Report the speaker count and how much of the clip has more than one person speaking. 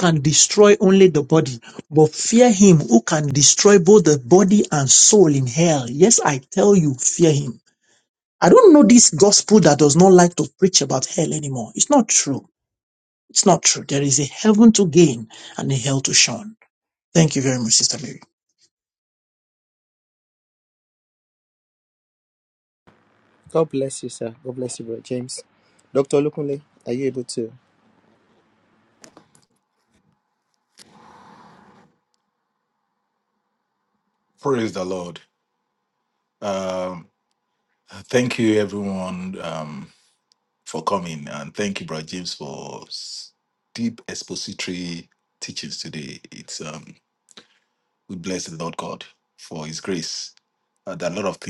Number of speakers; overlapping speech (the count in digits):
3, no overlap